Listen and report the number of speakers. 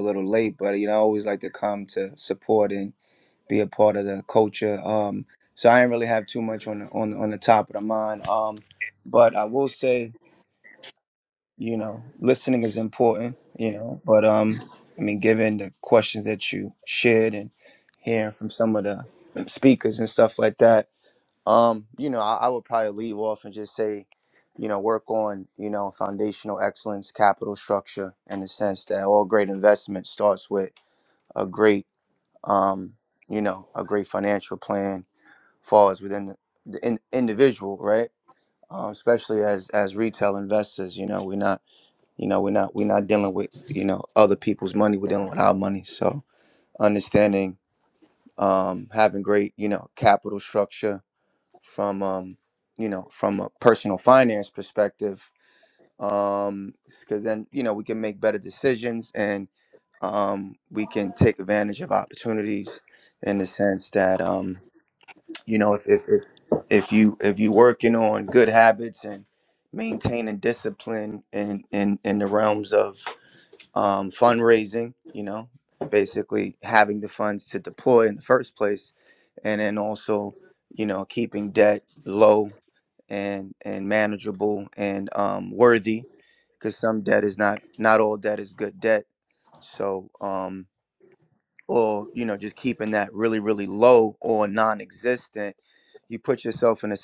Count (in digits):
1